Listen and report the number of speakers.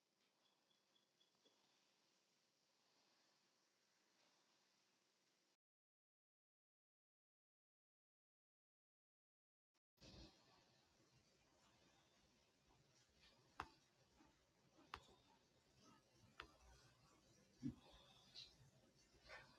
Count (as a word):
zero